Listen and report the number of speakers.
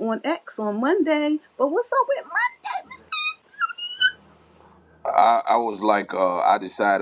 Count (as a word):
two